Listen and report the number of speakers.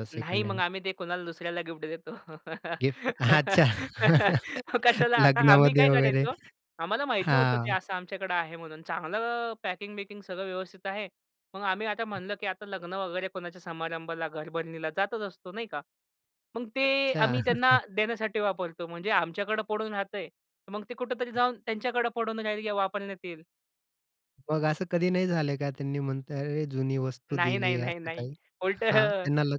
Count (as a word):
two